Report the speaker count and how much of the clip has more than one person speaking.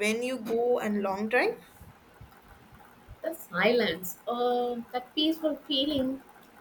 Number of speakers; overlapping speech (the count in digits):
2, no overlap